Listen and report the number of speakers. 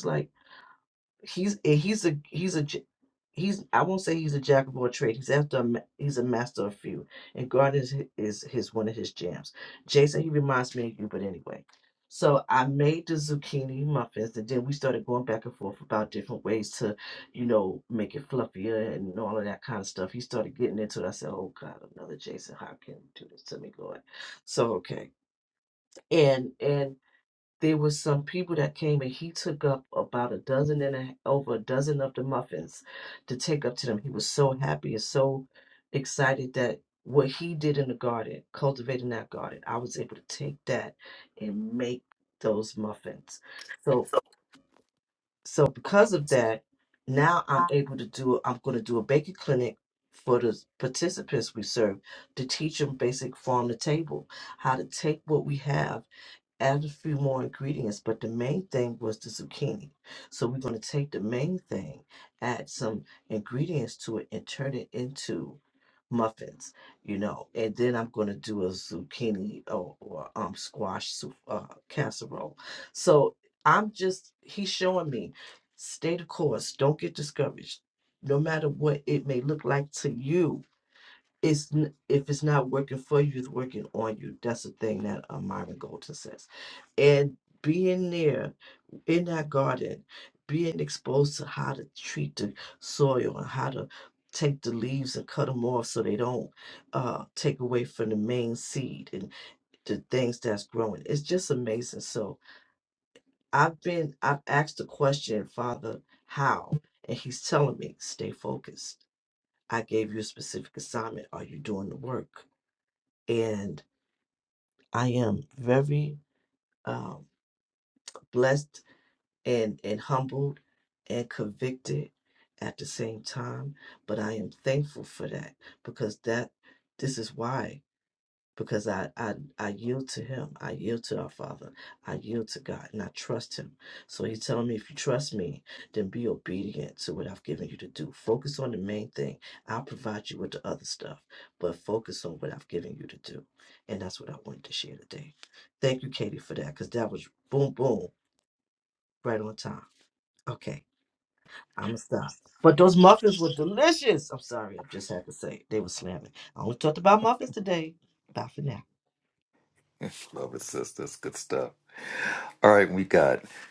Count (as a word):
two